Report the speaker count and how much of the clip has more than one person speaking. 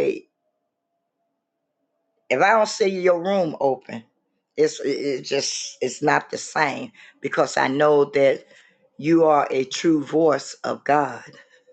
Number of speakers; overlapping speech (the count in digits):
1, no overlap